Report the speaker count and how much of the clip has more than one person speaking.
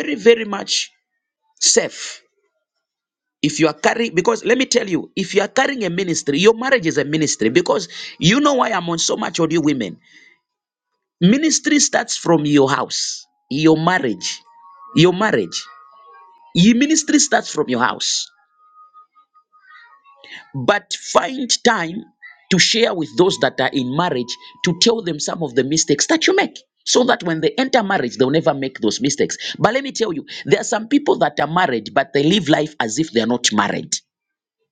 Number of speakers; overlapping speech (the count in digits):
1, no overlap